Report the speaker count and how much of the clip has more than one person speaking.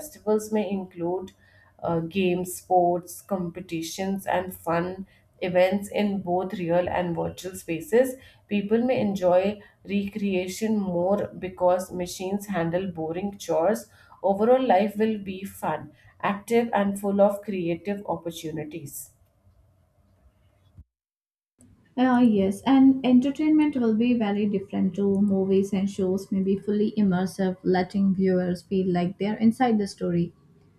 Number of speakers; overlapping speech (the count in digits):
2, no overlap